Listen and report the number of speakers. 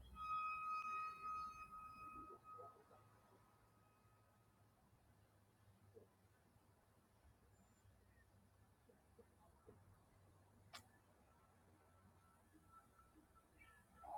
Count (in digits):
0